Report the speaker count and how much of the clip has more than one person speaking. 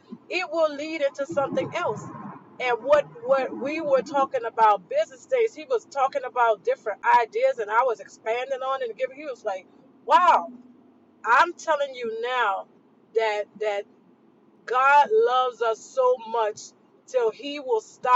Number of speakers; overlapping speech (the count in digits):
1, no overlap